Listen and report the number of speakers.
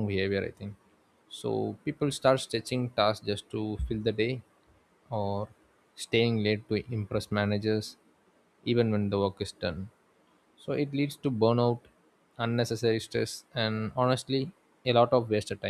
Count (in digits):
1